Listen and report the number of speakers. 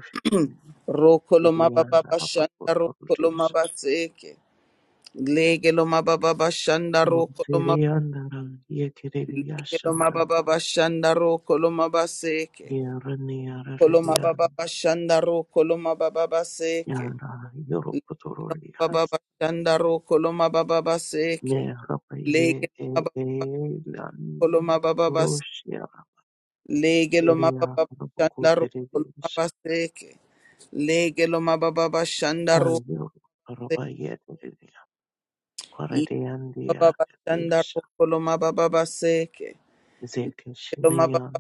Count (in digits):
2